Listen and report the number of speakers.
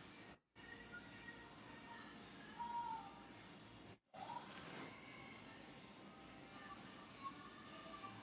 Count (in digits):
0